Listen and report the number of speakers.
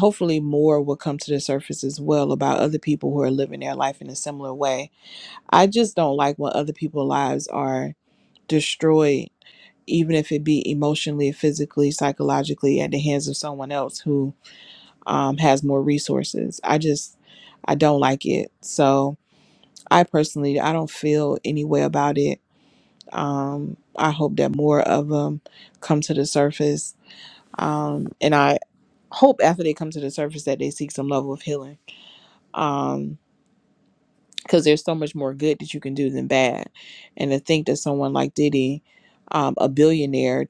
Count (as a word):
one